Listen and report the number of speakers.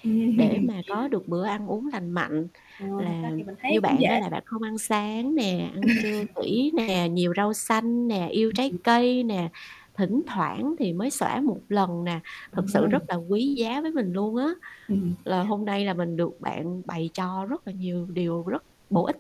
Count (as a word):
two